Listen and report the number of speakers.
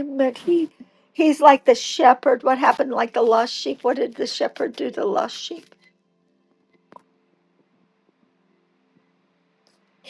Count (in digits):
1